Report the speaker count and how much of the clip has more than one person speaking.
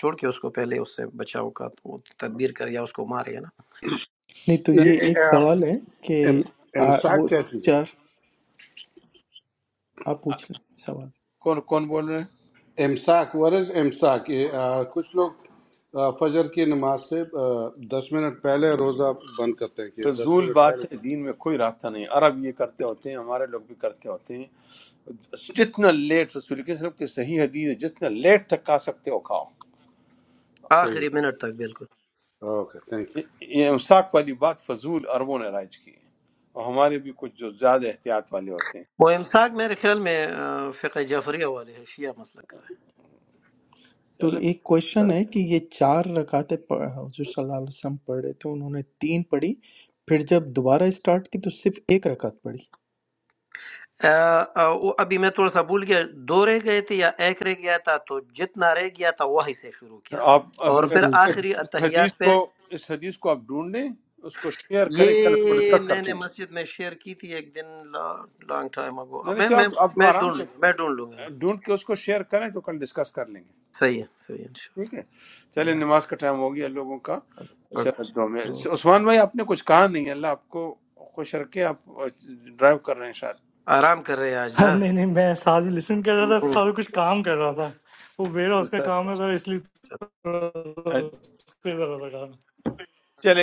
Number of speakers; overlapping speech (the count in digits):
5, about 8%